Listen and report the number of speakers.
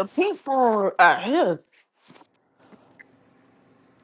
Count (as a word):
one